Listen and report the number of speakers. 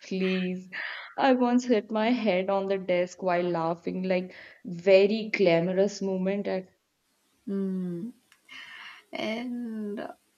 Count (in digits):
2